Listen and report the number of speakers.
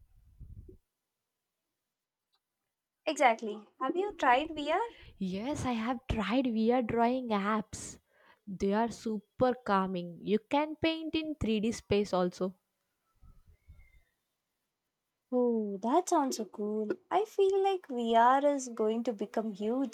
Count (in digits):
2